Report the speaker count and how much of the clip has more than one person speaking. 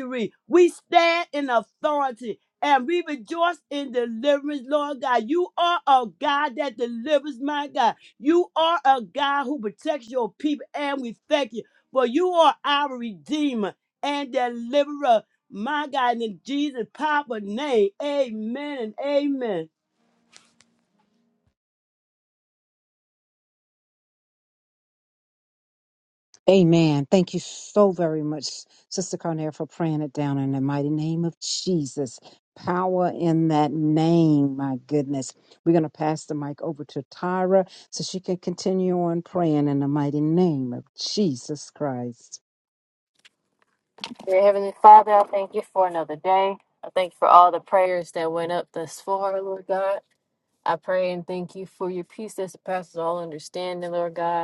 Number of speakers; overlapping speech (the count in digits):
3, no overlap